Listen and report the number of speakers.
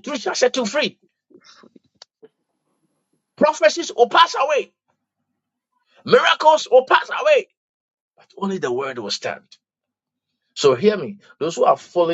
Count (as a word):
one